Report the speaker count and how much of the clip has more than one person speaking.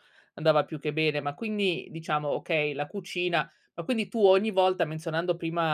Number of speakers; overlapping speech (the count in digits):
1, no overlap